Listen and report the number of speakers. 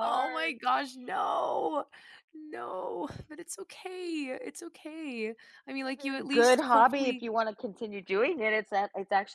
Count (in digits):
2